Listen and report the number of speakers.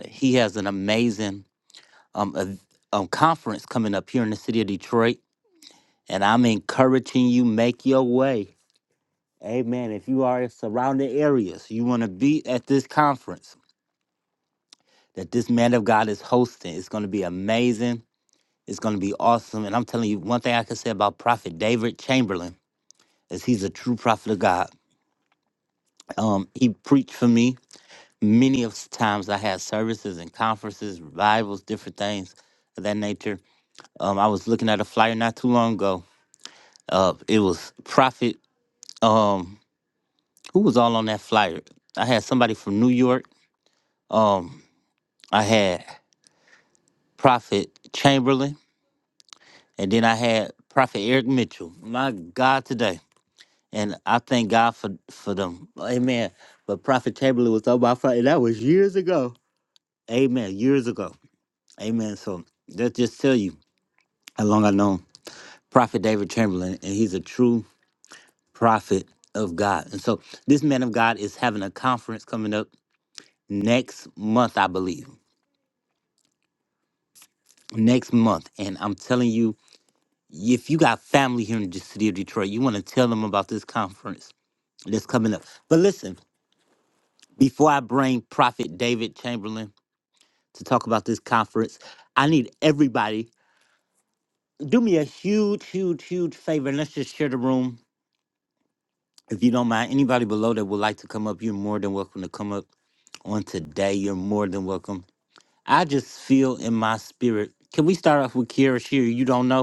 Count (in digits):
1